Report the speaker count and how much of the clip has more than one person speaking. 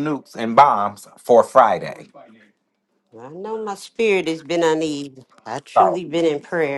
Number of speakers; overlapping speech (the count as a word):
two, about 3%